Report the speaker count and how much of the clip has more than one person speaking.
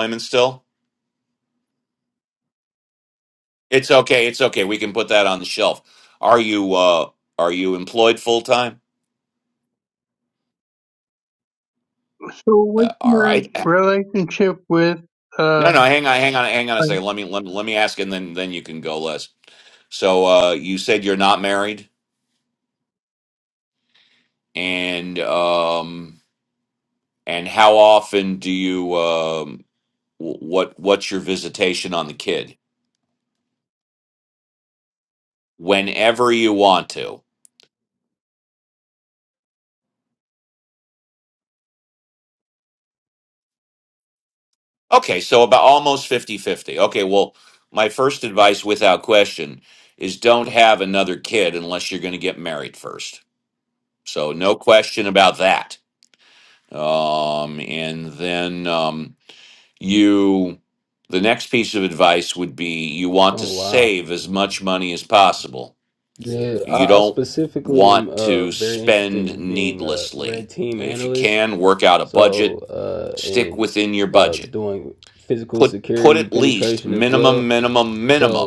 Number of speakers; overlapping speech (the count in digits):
3, about 11%